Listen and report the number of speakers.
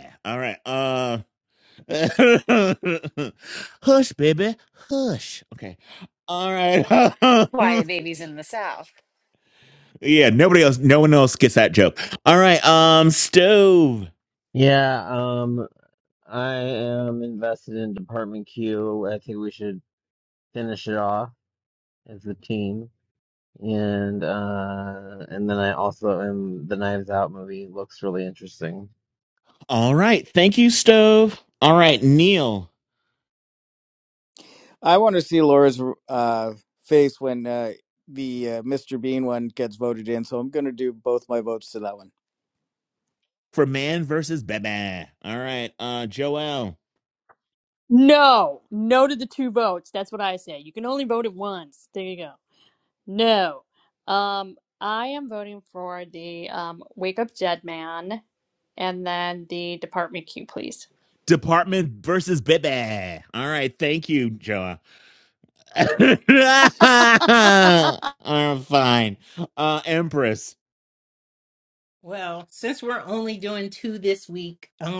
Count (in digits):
6